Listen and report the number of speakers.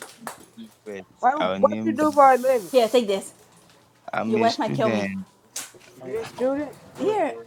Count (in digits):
3